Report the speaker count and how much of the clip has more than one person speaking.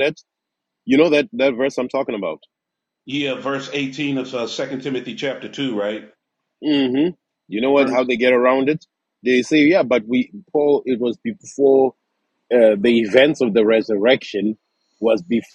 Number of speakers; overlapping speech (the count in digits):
2, about 1%